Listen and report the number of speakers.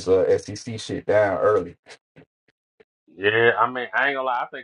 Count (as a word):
two